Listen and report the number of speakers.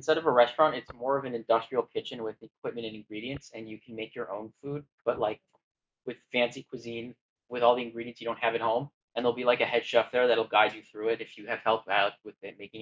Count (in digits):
1